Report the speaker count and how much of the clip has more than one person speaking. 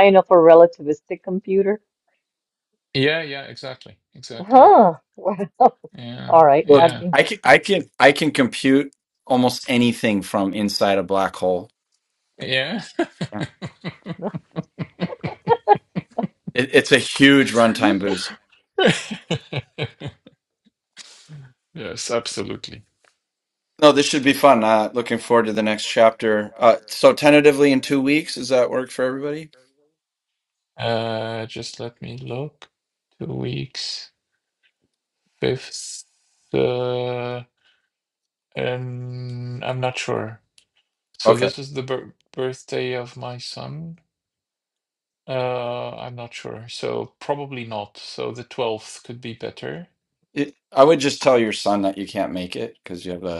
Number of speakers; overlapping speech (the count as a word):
three, about 3%